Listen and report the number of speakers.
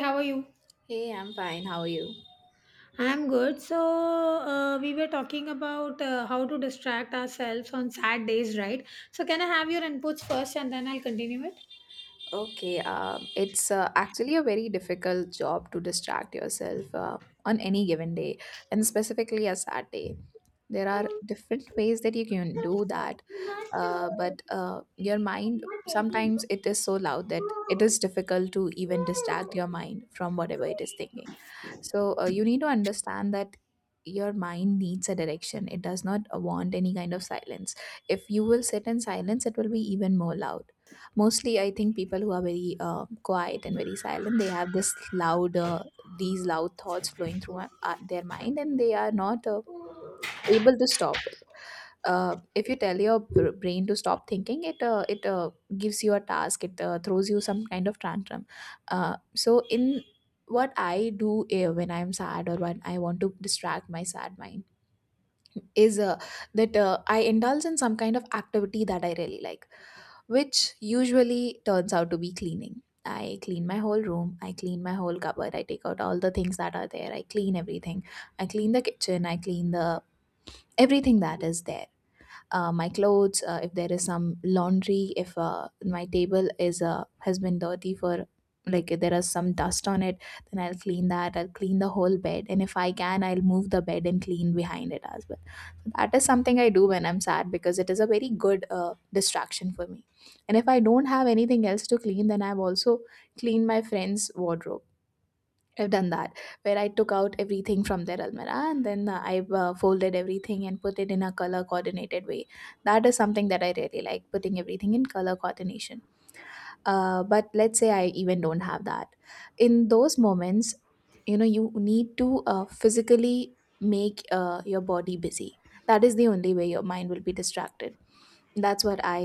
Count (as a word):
two